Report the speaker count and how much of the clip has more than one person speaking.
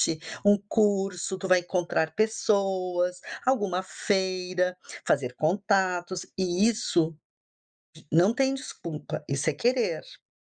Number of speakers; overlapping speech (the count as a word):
one, no overlap